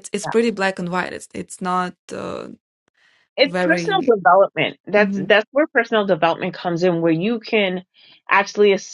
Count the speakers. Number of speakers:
2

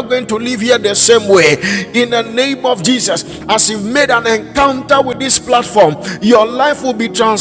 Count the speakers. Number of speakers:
1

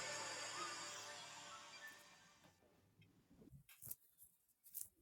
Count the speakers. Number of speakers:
0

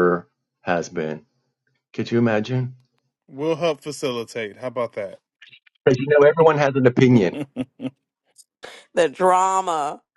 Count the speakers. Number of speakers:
3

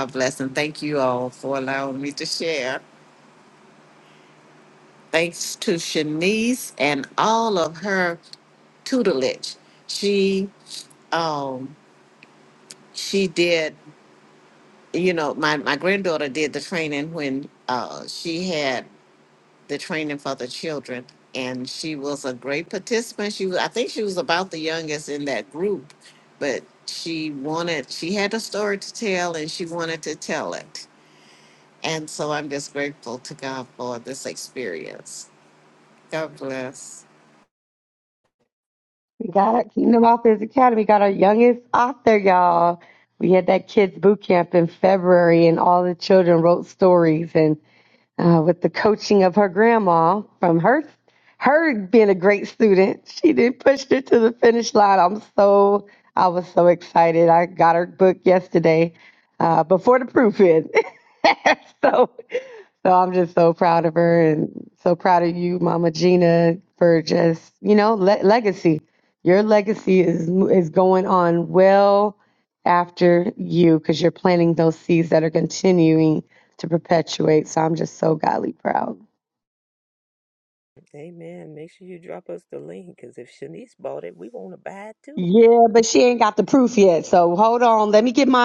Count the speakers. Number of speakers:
3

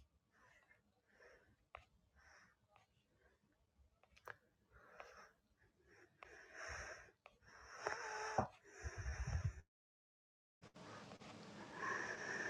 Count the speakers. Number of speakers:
0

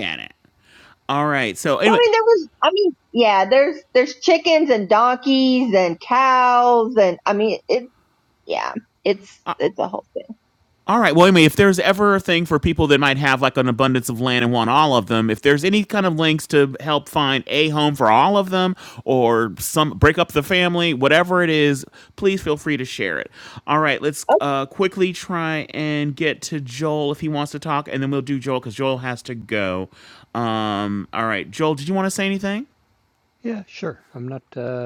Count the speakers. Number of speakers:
3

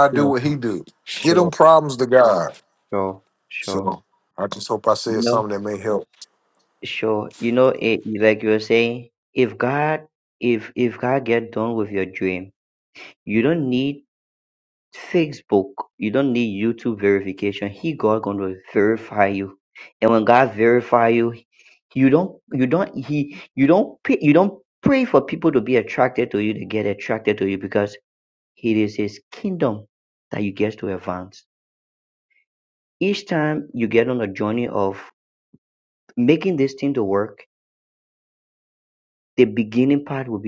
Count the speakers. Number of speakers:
2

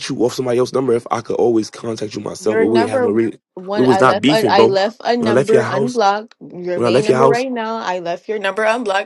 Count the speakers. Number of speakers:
2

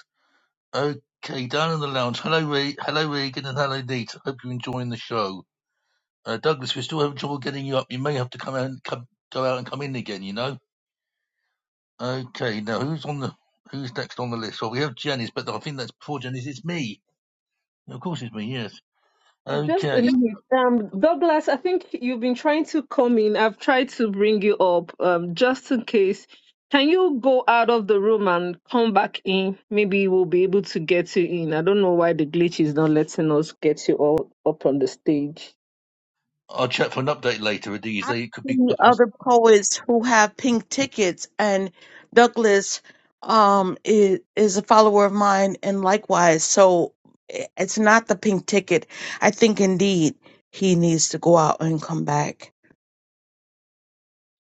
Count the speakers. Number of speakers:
3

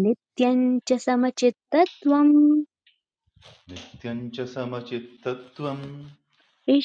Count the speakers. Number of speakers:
2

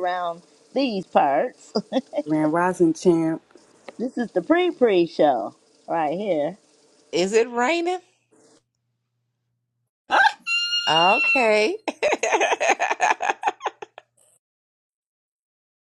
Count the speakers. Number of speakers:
3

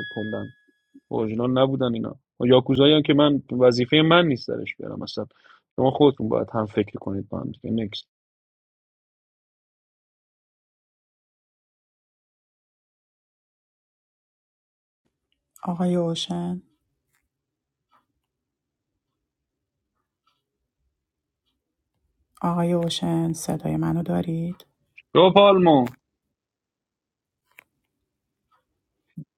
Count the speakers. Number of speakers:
2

